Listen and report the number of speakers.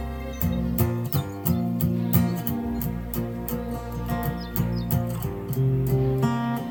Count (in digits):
0